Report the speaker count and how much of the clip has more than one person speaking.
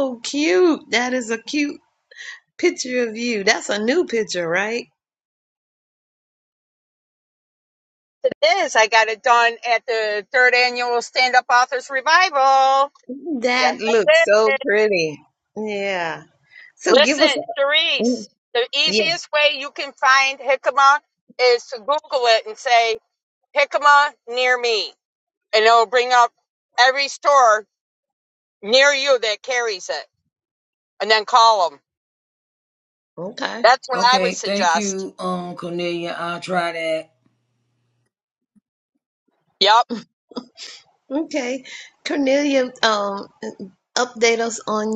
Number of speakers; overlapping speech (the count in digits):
3, about 6%